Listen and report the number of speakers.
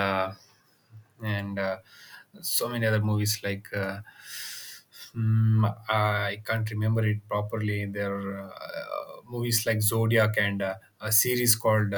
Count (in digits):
1